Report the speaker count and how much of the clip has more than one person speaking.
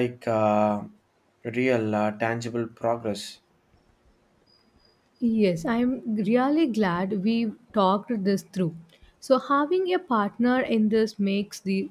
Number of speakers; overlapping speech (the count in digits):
2, no overlap